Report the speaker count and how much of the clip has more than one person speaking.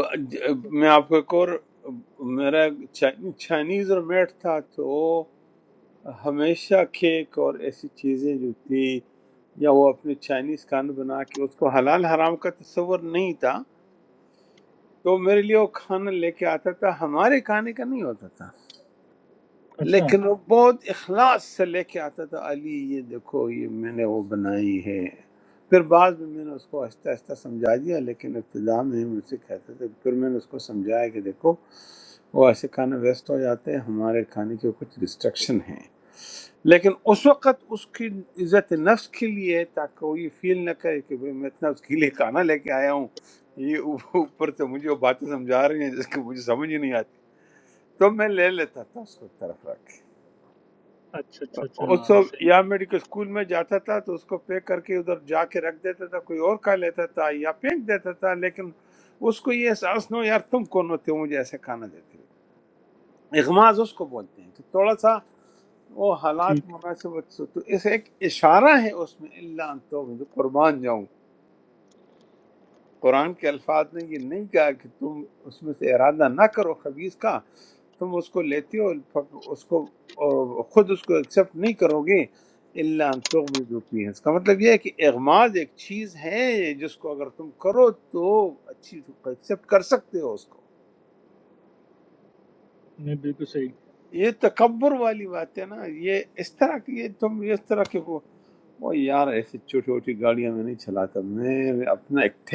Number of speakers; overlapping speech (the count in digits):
2, about 1%